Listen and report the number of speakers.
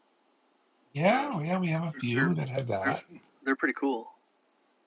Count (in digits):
2